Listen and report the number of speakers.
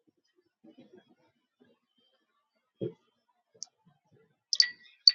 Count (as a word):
zero